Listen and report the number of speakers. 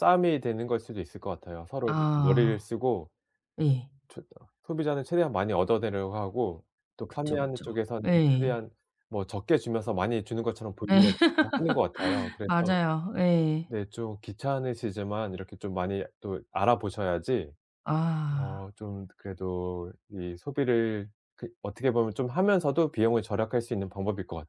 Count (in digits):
2